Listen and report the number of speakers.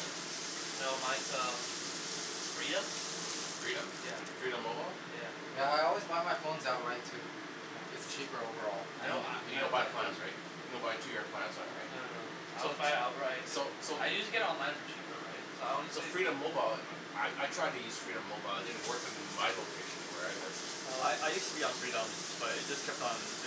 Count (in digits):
4